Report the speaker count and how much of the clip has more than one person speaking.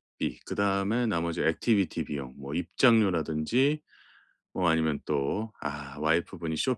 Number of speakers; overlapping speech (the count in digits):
1, no overlap